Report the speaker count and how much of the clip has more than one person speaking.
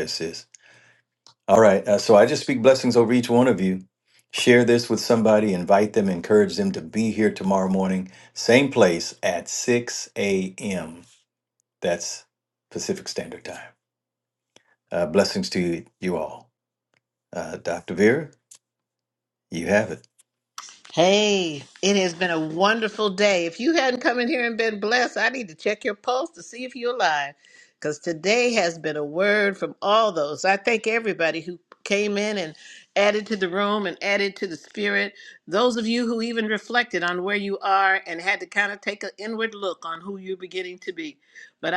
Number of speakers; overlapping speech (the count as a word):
two, no overlap